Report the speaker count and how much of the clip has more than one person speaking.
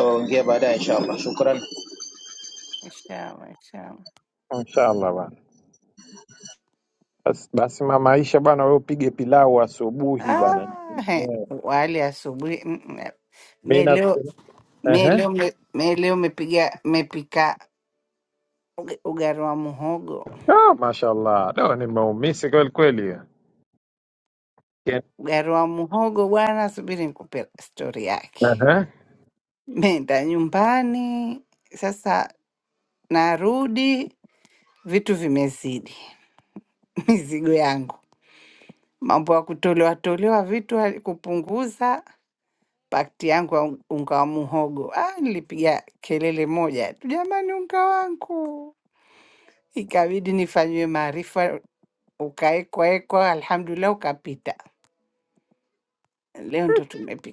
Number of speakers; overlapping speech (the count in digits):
3, about 3%